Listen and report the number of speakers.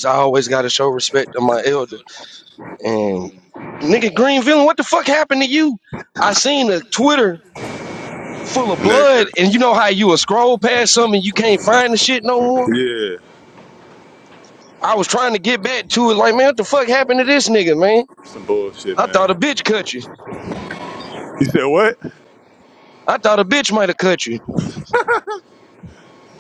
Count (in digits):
2